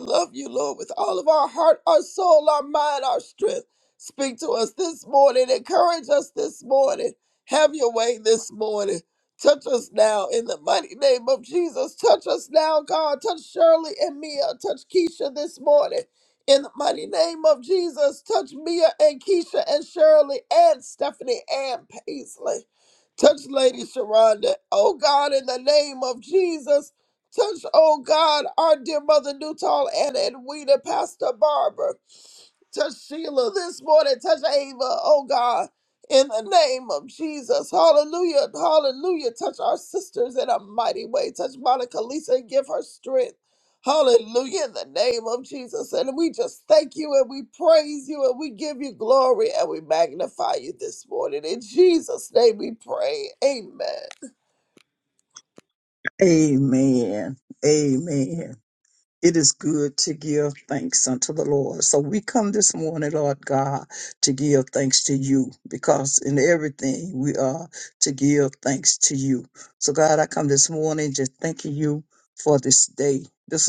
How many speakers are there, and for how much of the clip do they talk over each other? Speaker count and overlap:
2, no overlap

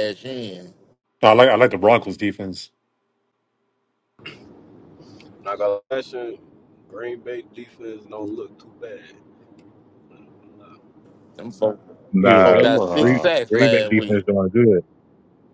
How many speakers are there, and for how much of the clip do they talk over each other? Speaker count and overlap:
4, about 13%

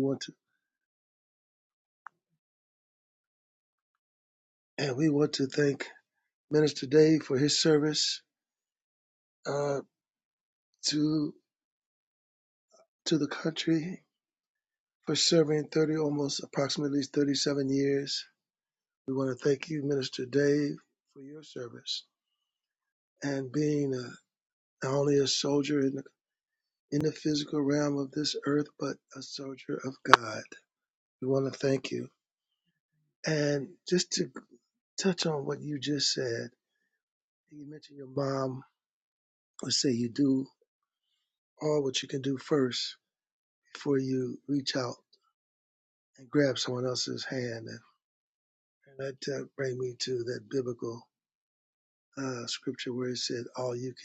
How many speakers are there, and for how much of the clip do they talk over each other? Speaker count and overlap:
1, no overlap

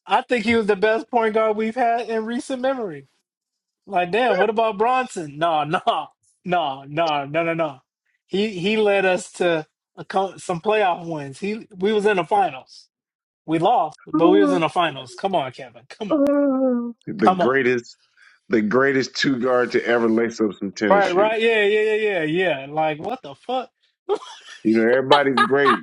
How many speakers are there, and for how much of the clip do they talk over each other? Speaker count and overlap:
2, about 4%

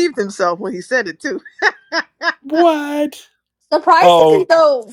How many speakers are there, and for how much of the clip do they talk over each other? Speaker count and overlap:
3, about 9%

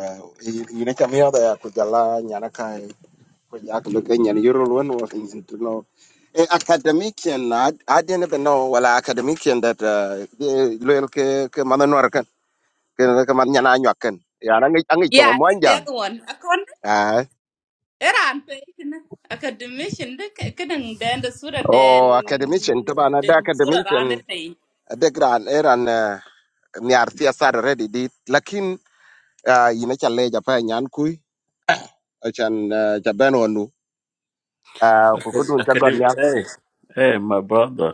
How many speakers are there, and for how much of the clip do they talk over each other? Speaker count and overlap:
3, about 8%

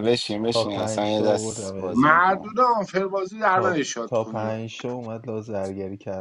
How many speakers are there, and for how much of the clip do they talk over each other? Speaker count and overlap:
3, about 42%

